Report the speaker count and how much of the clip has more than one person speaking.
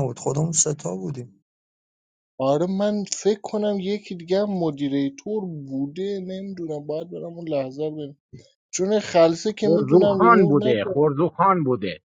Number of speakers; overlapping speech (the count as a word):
three, about 11%